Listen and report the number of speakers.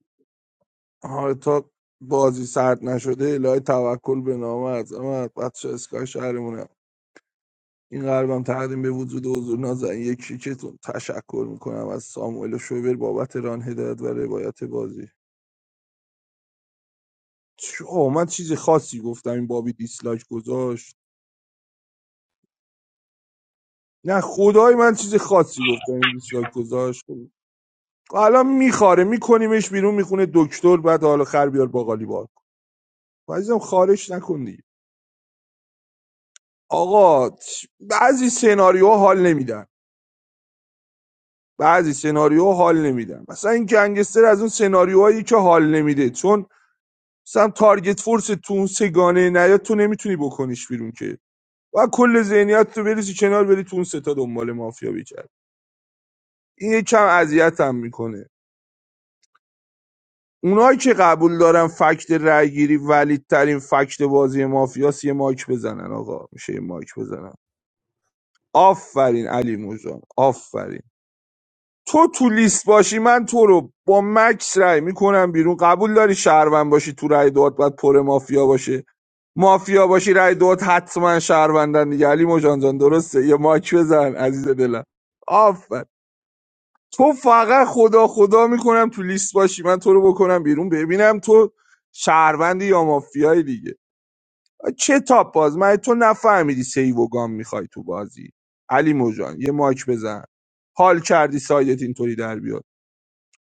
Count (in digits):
1